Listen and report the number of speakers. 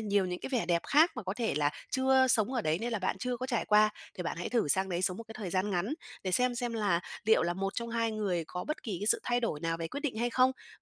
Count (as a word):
one